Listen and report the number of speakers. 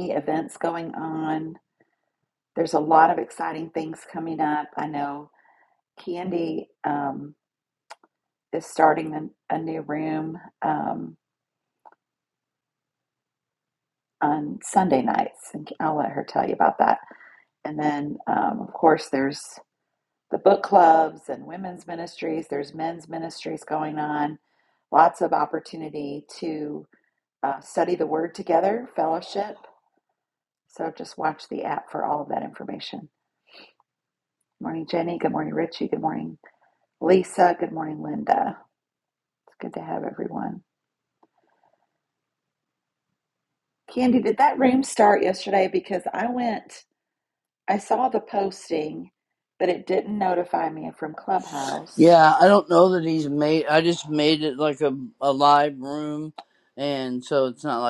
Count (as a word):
two